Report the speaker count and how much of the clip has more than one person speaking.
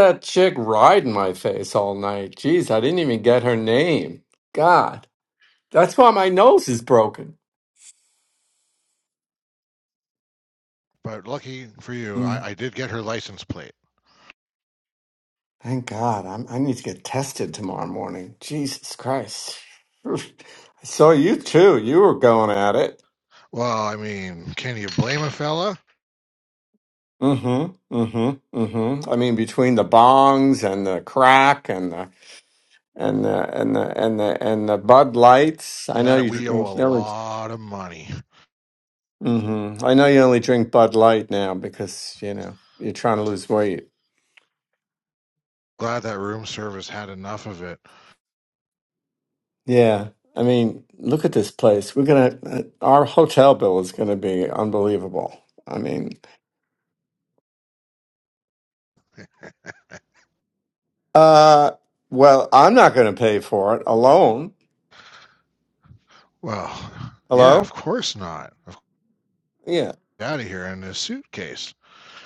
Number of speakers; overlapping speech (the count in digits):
2, about 2%